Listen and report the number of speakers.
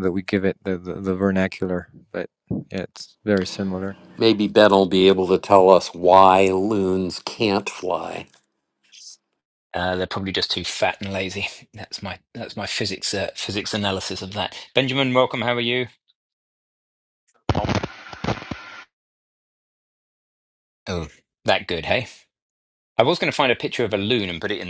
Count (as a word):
three